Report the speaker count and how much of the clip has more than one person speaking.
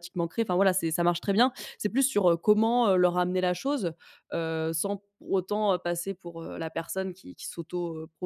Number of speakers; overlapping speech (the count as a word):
one, no overlap